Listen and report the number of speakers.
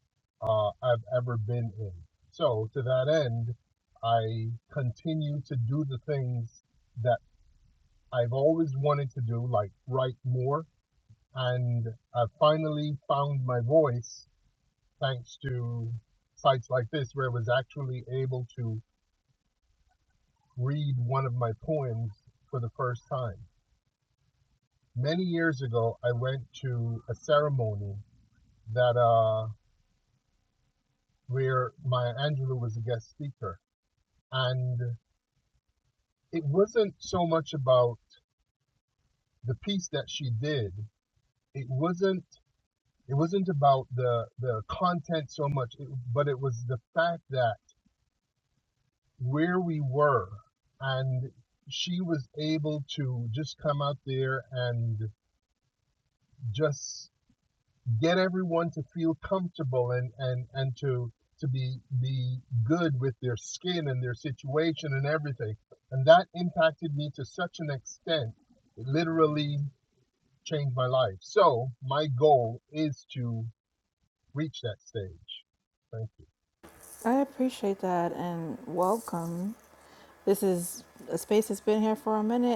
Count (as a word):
two